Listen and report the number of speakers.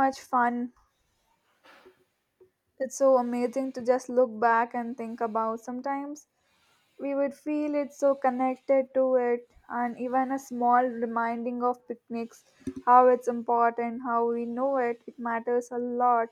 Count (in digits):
1